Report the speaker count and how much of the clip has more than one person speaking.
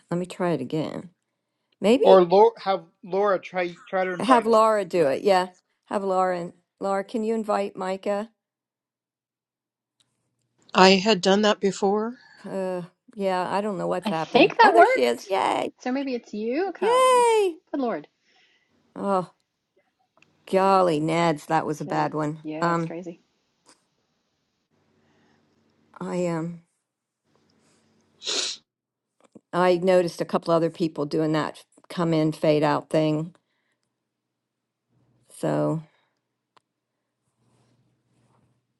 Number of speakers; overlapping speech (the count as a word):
four, about 8%